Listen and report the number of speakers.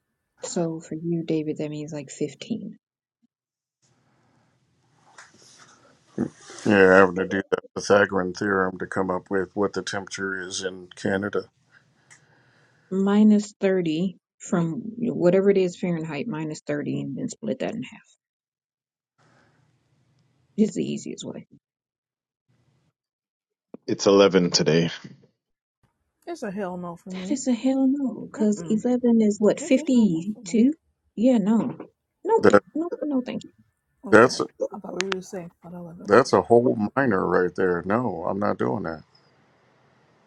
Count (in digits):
4